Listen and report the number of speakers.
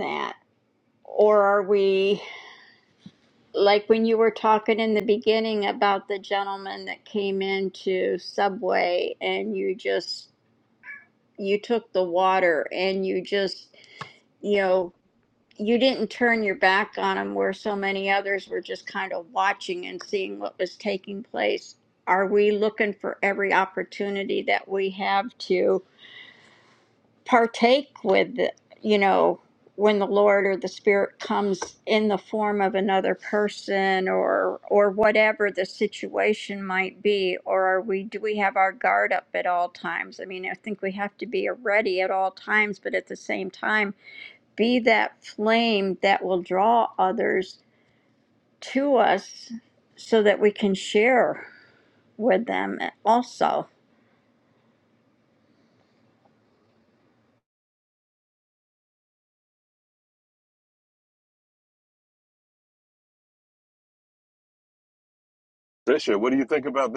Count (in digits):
2